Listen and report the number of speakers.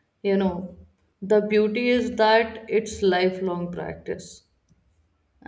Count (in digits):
1